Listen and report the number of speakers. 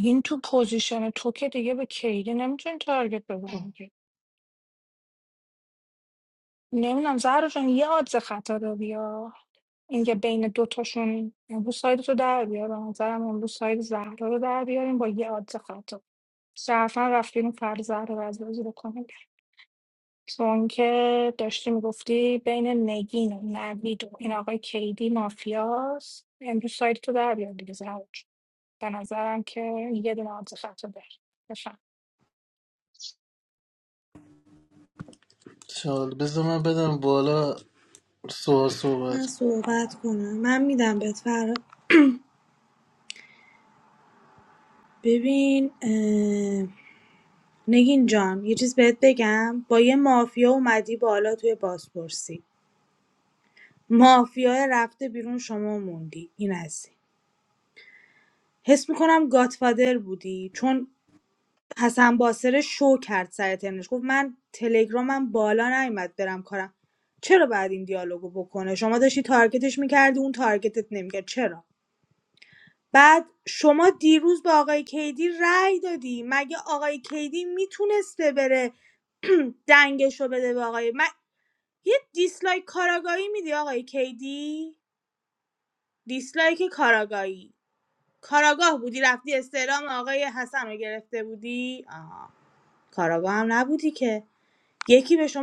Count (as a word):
three